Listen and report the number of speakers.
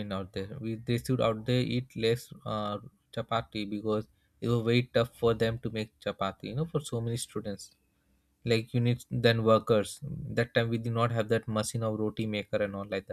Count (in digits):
1